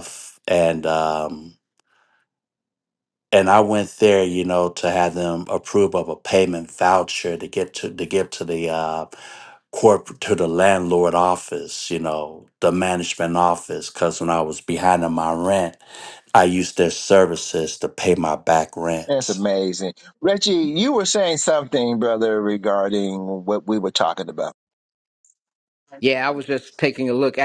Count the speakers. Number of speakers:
three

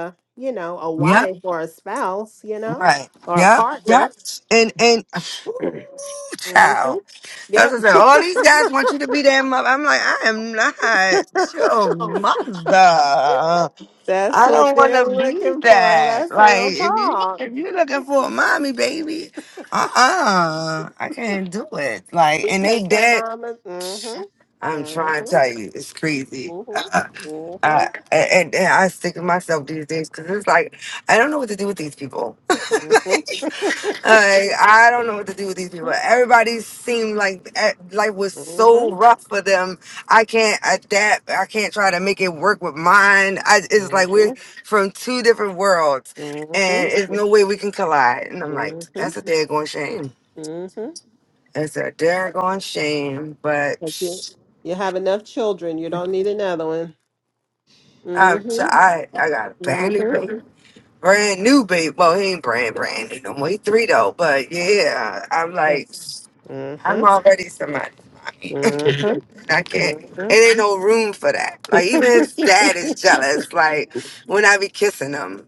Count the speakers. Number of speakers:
two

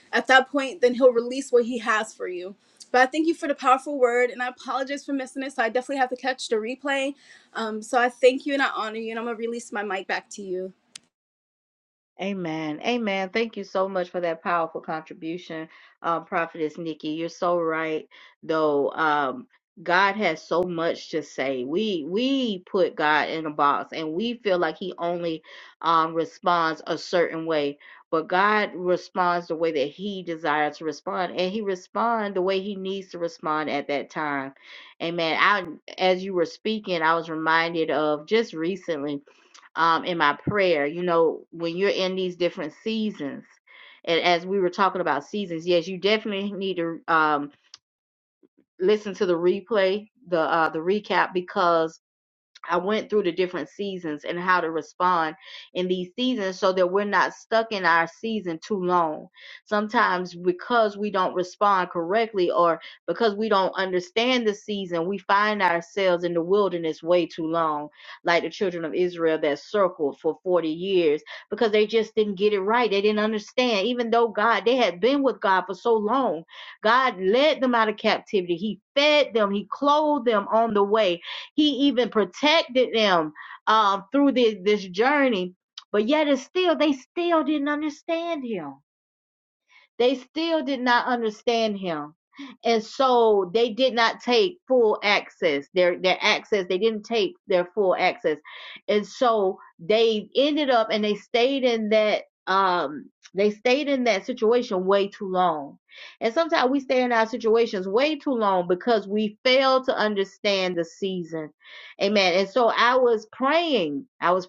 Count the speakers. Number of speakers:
two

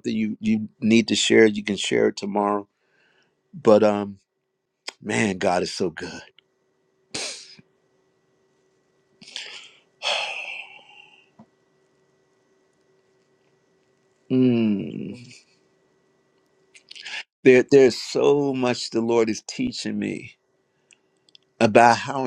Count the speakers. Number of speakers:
one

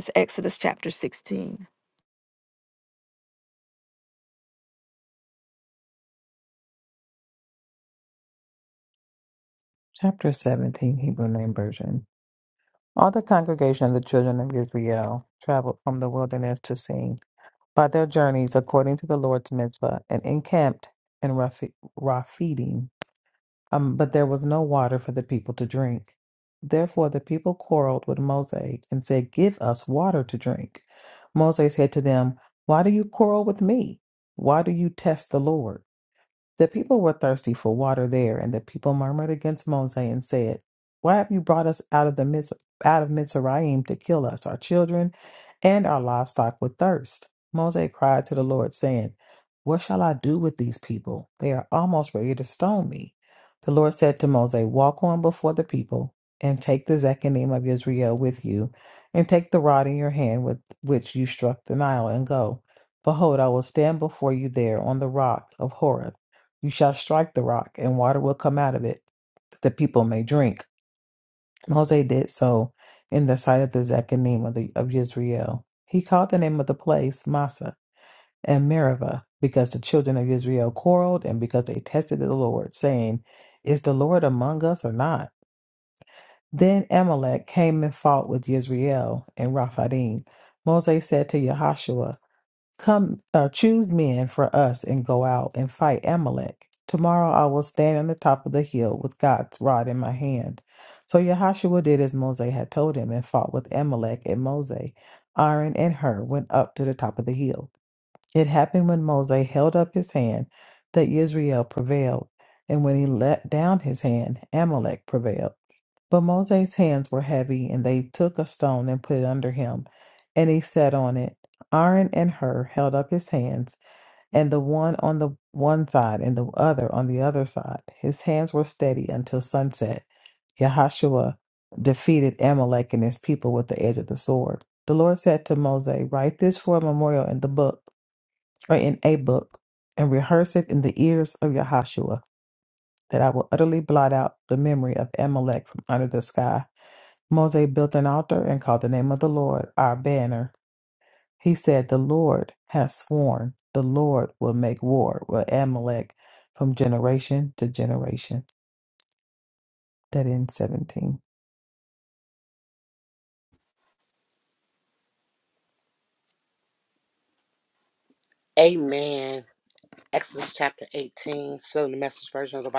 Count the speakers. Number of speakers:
three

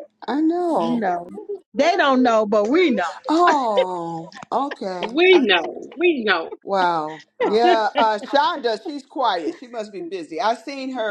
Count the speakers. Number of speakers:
three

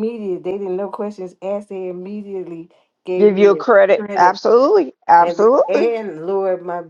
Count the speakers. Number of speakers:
two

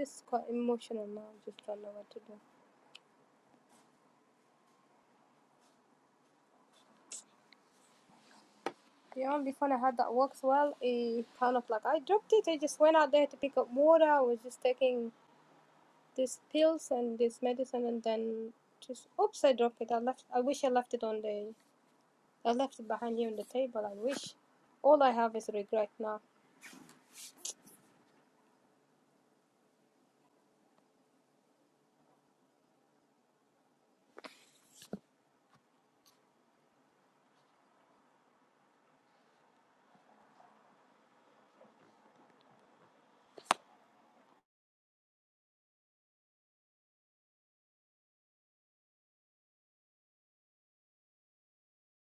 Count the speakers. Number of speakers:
one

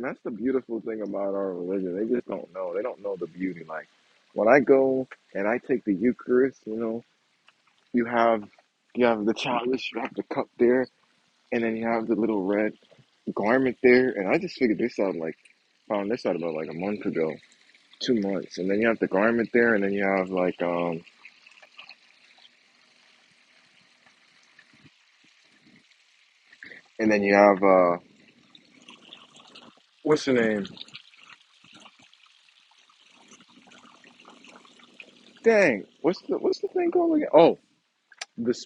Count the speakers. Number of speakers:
one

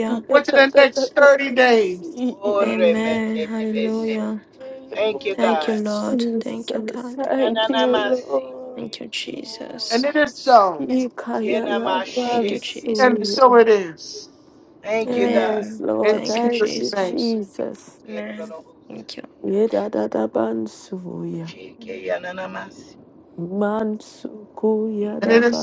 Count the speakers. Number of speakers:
four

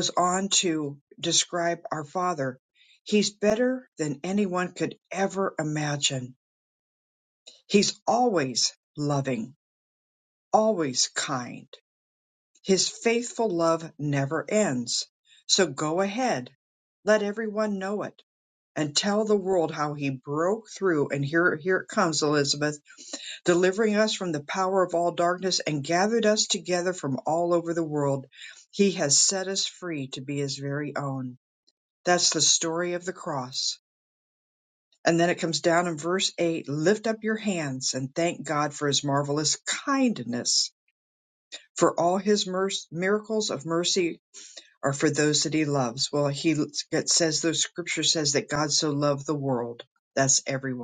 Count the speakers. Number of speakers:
one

